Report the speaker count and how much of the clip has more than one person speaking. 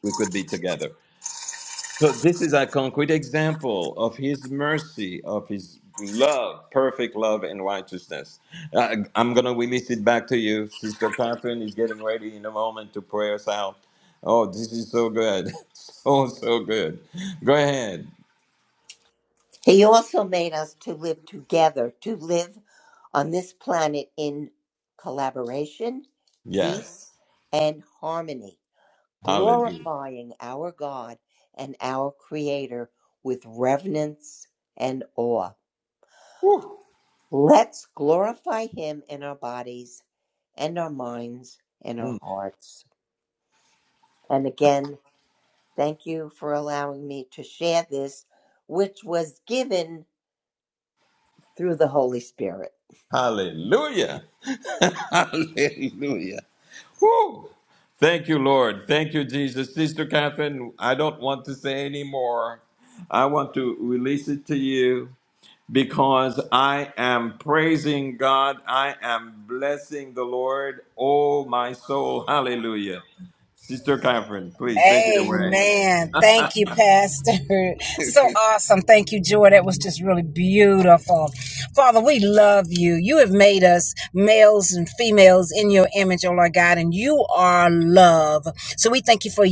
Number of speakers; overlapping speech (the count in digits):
3, about 2%